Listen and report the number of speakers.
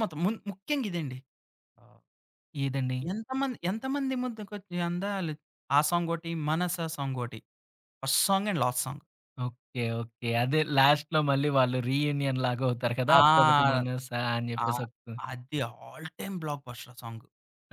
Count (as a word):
two